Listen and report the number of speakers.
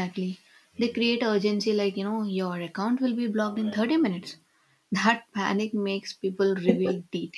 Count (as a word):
one